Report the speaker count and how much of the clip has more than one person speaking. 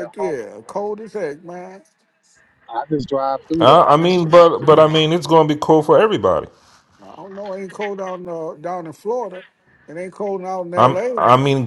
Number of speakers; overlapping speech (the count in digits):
3, about 12%